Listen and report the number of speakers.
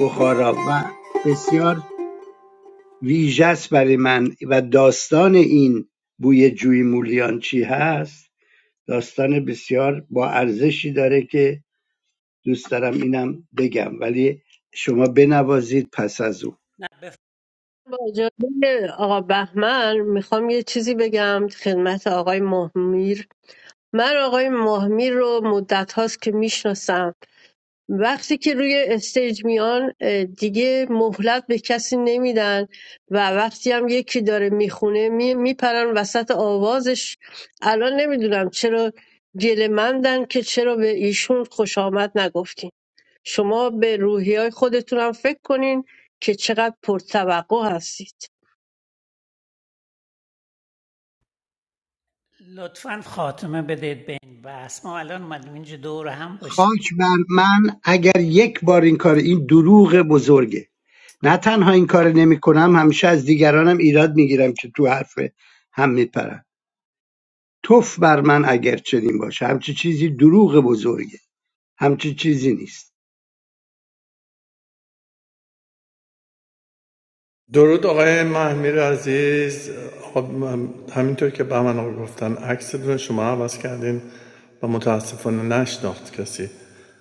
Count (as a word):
four